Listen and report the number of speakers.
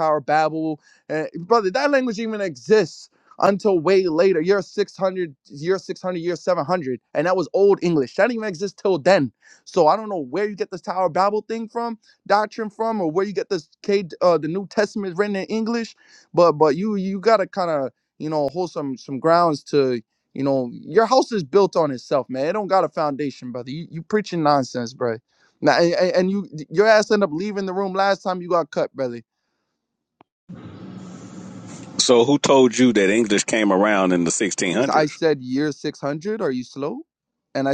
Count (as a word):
two